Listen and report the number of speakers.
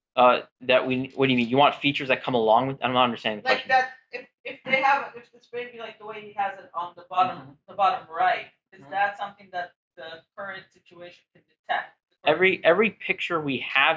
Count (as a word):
two